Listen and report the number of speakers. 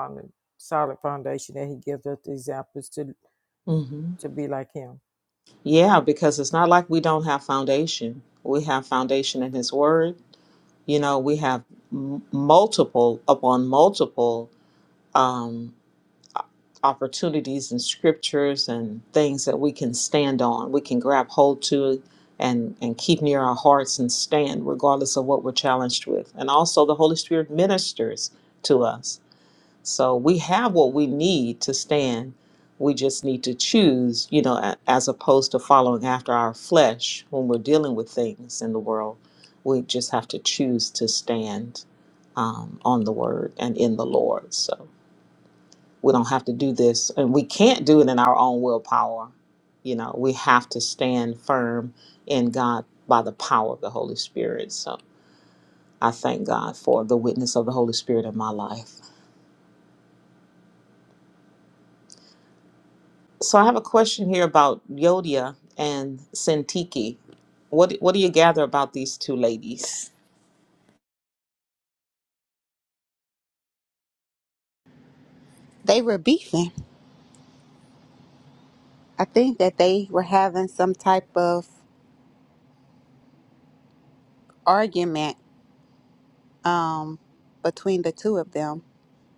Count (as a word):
three